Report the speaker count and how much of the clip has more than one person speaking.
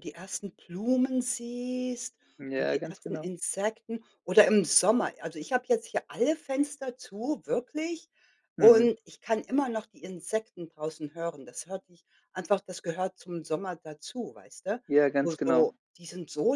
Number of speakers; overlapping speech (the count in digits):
2, about 9%